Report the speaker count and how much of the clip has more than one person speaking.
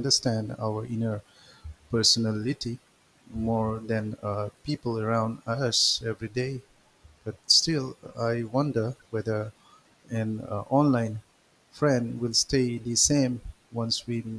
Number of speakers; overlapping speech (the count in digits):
1, no overlap